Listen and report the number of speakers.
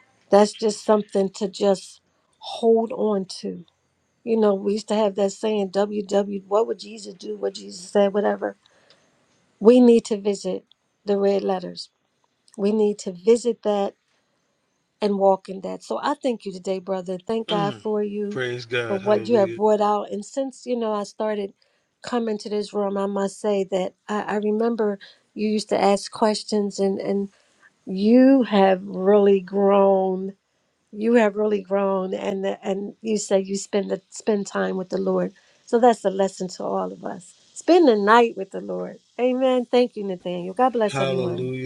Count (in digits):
2